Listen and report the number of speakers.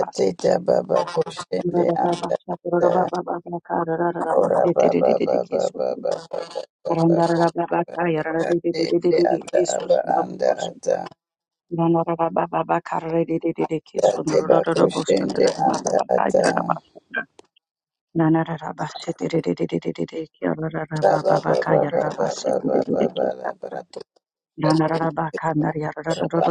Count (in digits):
2